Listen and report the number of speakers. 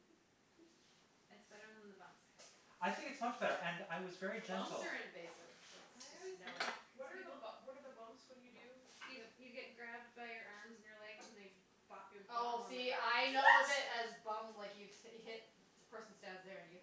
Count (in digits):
4